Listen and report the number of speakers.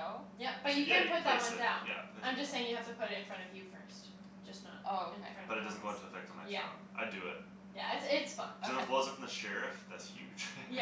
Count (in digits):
3